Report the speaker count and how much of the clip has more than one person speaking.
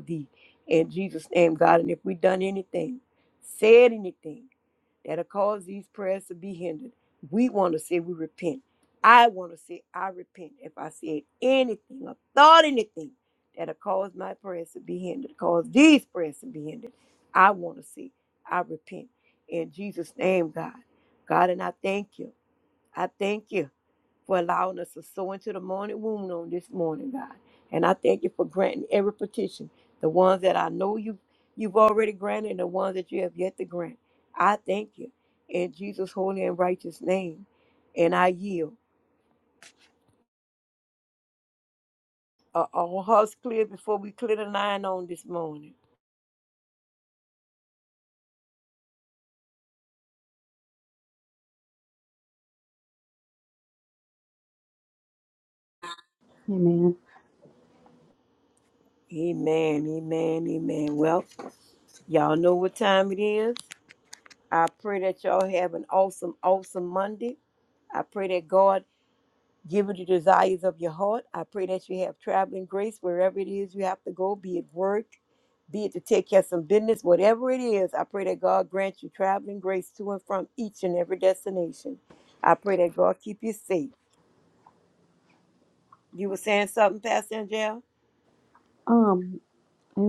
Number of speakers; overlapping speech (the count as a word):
two, no overlap